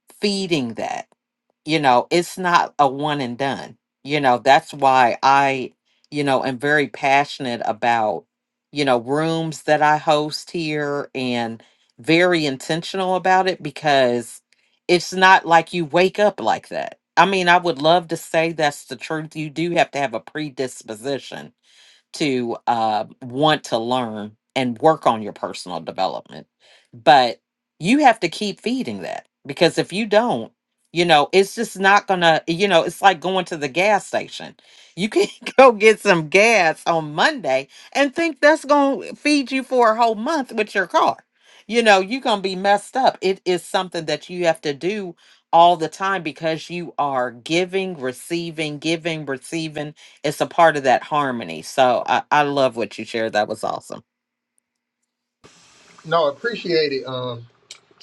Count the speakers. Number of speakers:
two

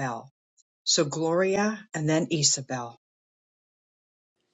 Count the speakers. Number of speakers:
one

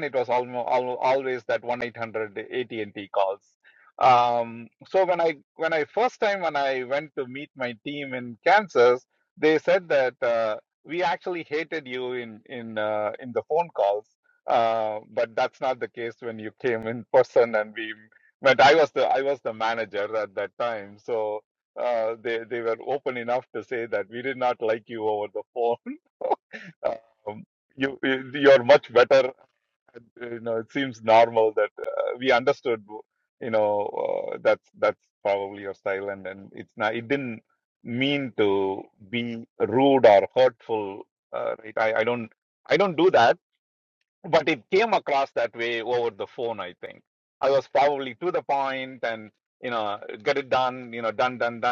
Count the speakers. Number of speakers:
one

